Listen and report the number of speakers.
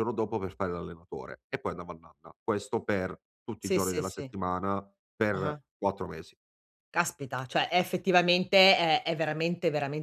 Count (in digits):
2